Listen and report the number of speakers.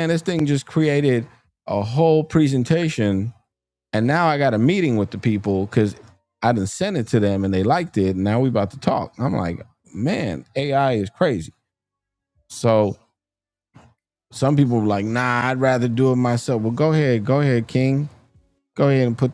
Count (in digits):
1